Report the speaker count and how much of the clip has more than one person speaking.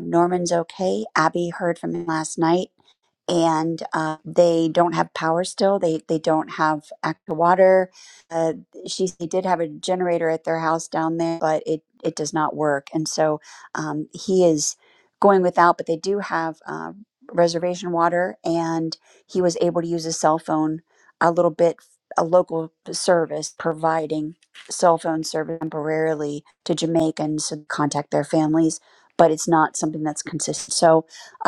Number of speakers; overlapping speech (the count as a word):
one, no overlap